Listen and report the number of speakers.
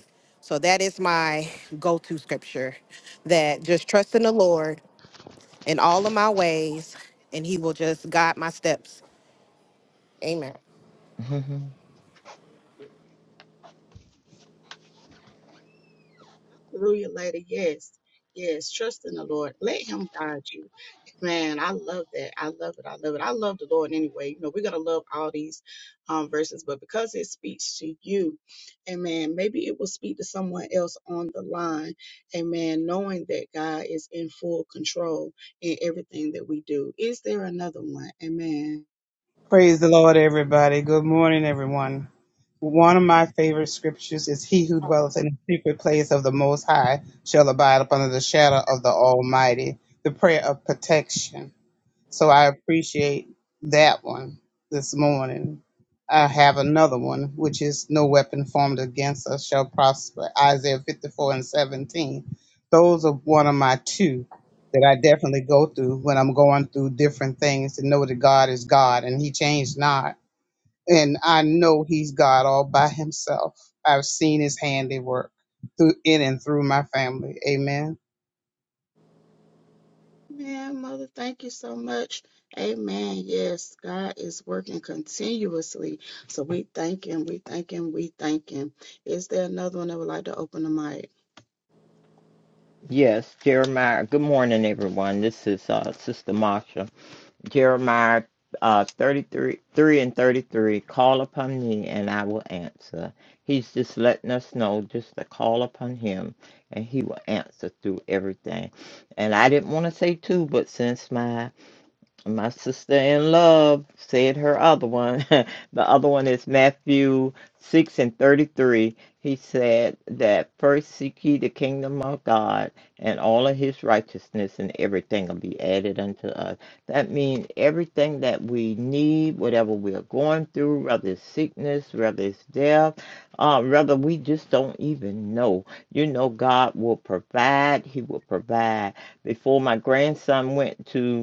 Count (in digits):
4